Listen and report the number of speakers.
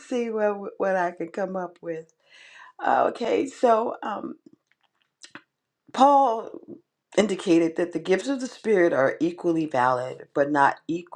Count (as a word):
one